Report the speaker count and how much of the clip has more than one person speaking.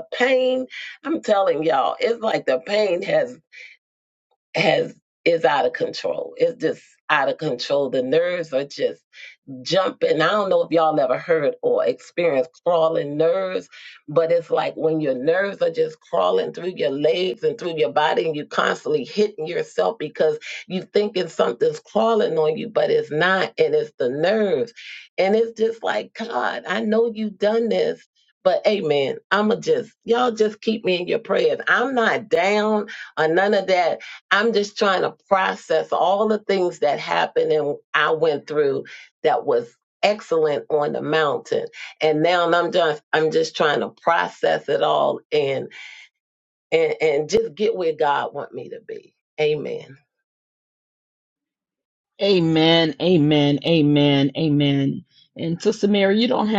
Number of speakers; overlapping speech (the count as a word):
two, no overlap